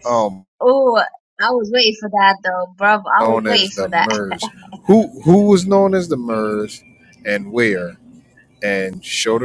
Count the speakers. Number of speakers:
2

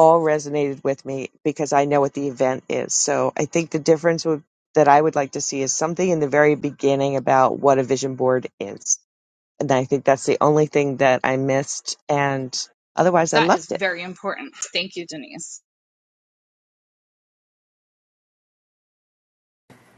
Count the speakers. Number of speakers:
2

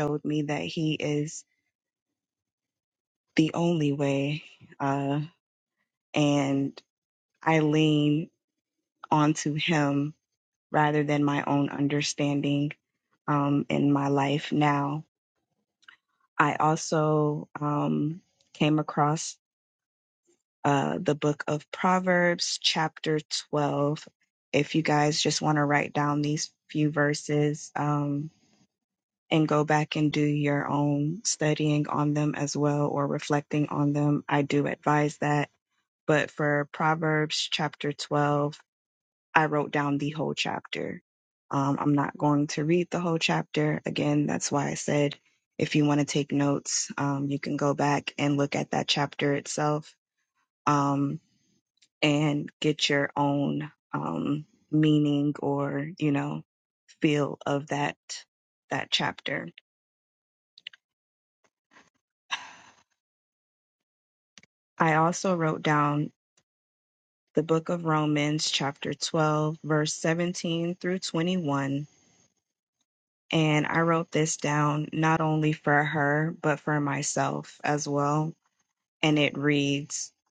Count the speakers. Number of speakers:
1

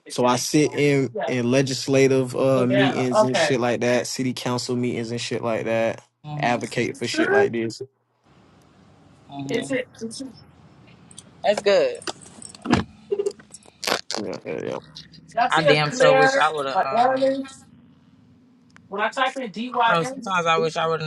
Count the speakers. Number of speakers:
3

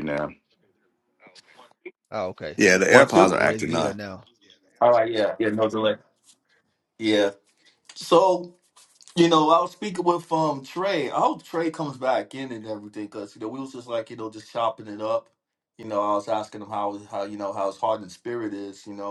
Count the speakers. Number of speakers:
3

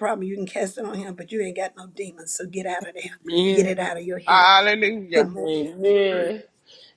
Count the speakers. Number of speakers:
3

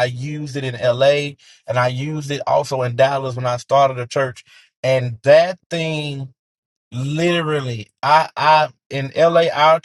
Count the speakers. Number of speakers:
1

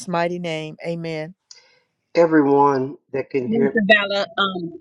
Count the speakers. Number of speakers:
3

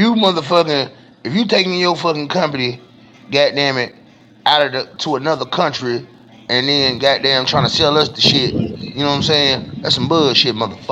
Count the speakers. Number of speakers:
1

